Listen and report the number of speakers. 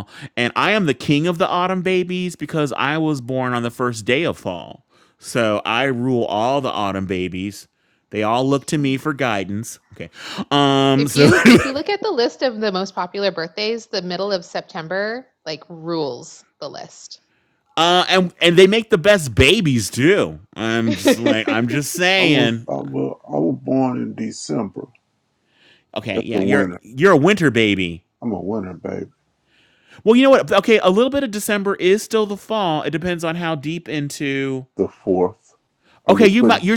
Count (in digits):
3